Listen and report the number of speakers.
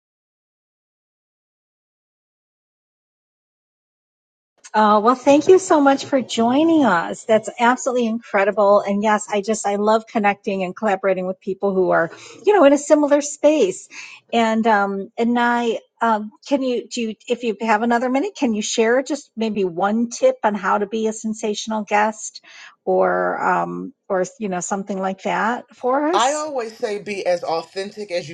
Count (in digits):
2